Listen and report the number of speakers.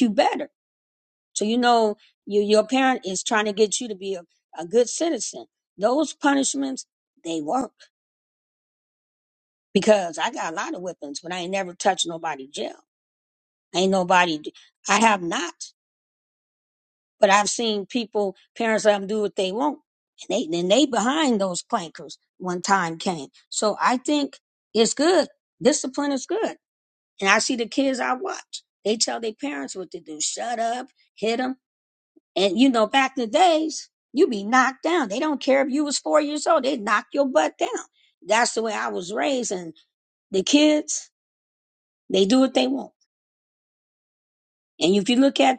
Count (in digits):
1